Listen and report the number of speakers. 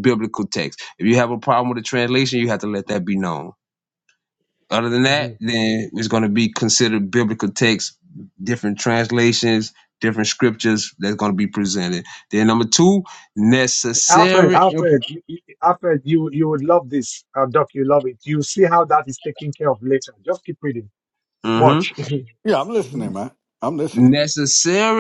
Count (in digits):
3